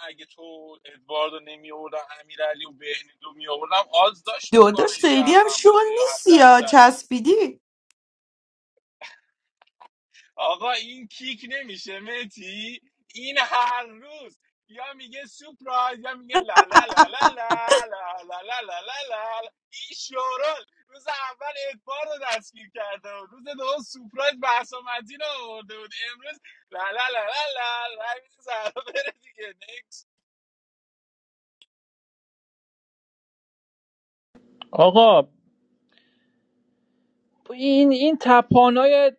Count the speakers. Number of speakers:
three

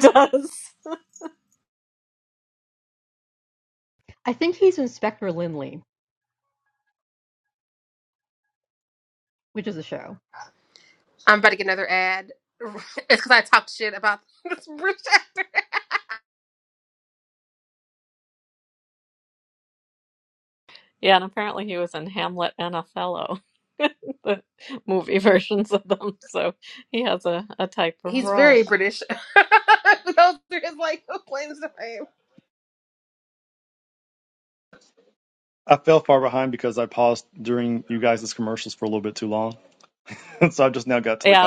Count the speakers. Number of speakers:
four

